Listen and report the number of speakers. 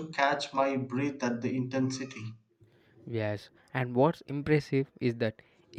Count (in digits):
2